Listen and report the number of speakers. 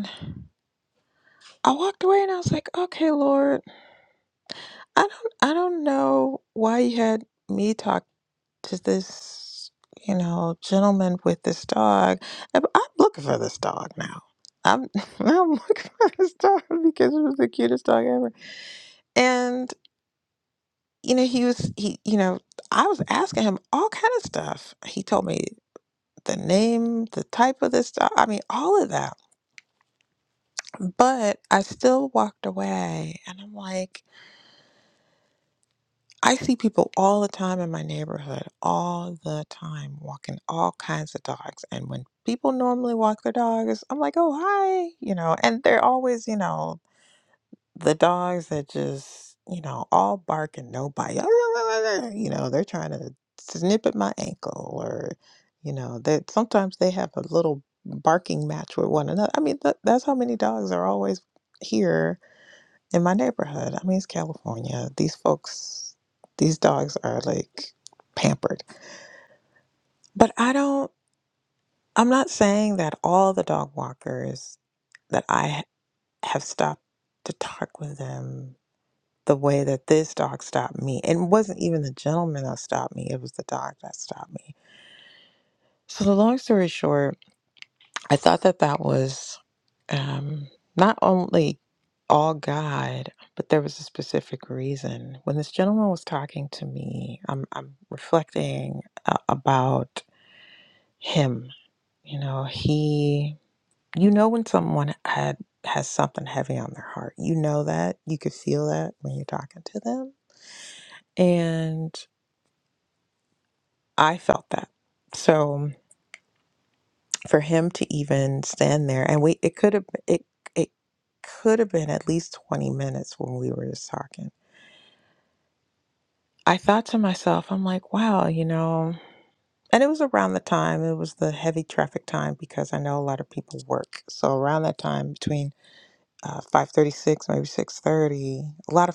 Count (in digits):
1